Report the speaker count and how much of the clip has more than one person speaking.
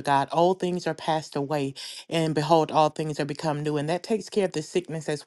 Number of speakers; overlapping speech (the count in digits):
1, no overlap